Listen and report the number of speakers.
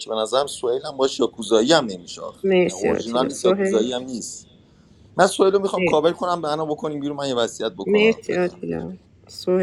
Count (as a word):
two